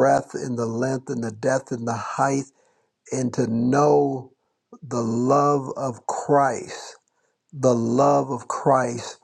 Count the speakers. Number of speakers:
1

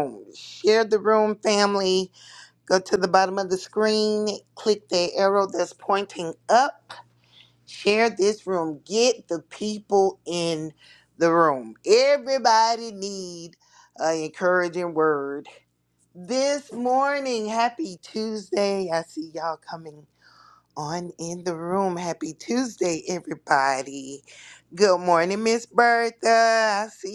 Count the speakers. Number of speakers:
1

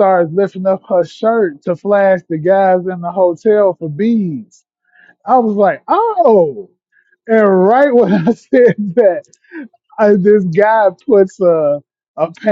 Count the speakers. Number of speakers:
1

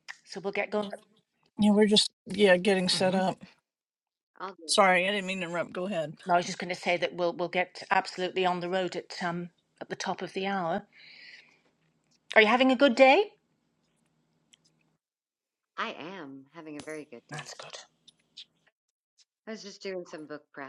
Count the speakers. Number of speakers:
3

